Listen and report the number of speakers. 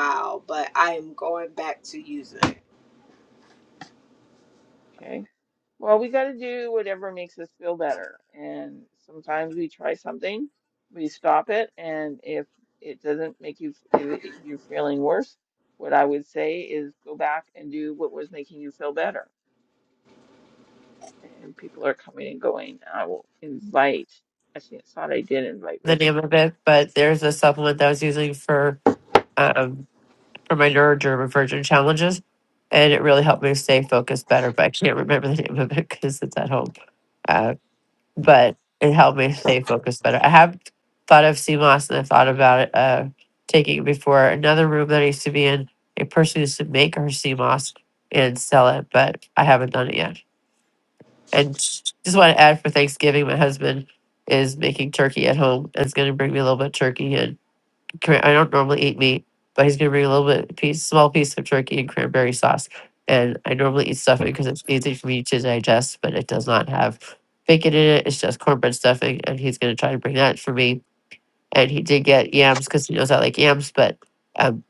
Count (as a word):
three